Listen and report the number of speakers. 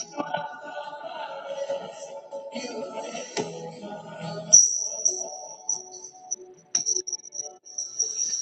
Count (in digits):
0